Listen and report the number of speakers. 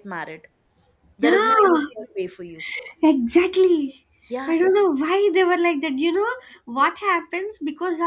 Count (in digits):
2